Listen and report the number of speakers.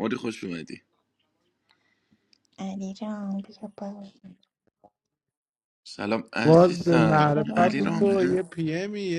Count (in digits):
3